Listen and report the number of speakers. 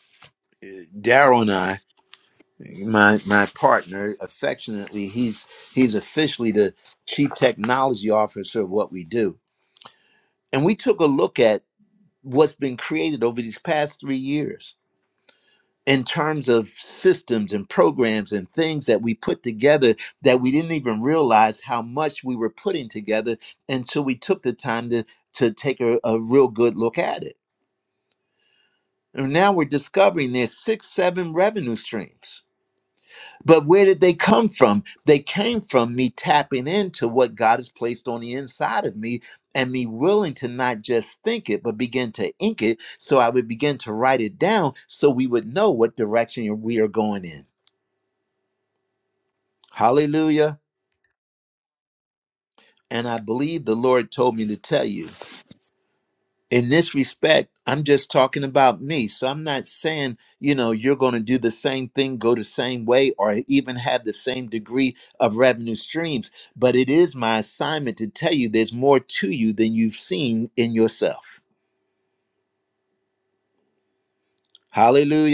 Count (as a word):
one